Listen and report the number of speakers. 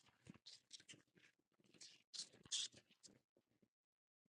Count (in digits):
0